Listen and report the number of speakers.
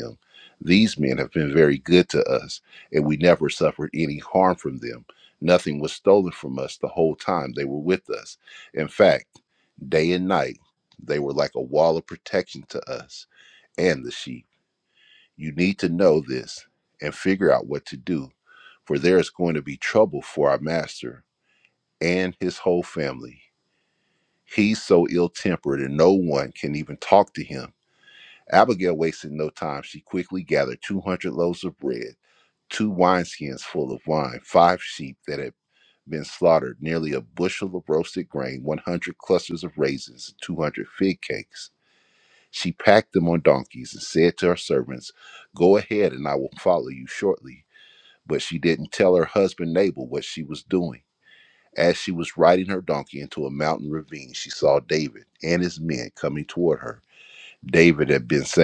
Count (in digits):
1